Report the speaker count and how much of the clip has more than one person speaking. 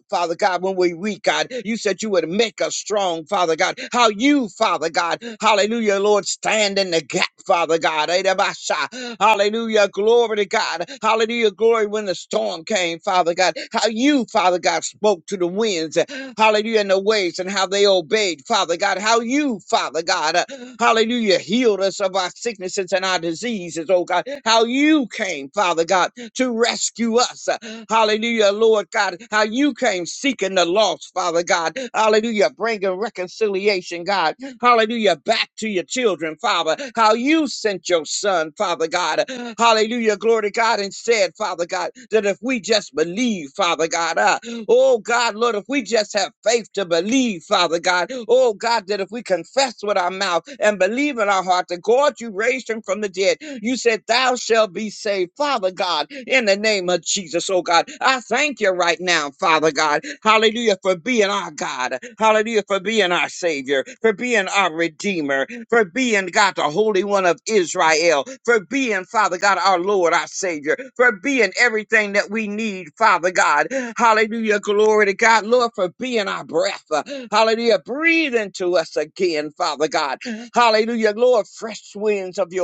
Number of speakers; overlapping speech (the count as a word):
one, no overlap